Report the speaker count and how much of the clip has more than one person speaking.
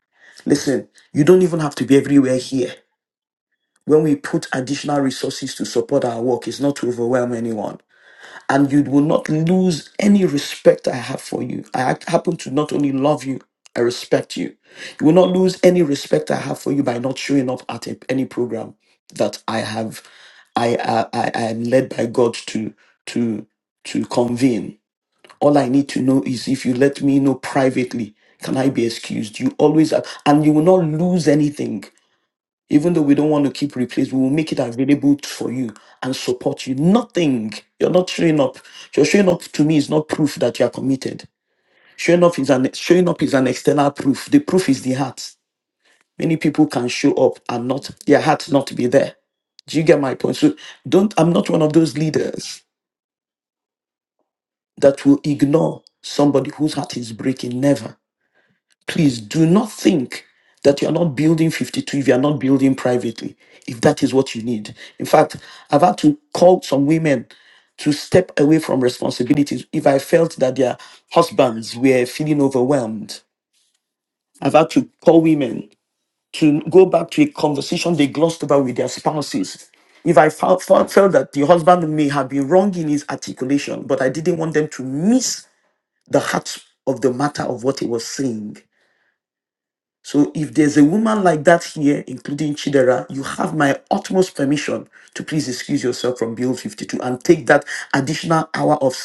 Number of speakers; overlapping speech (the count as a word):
one, no overlap